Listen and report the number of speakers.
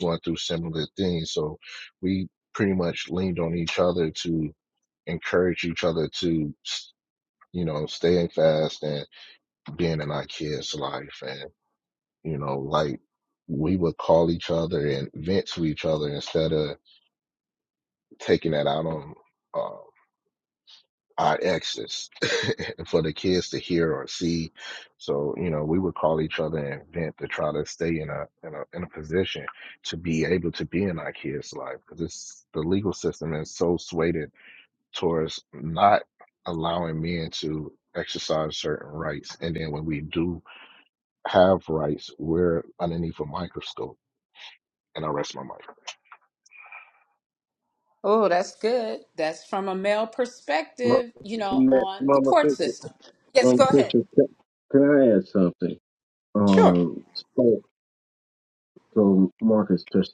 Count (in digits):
3